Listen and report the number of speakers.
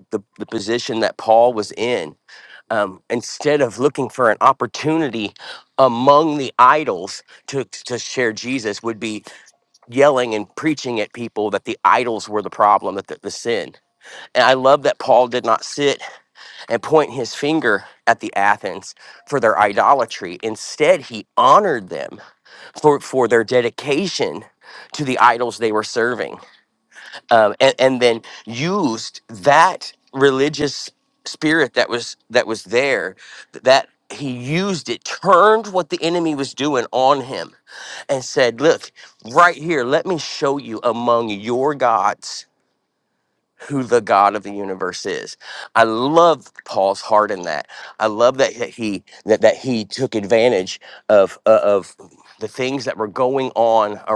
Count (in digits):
1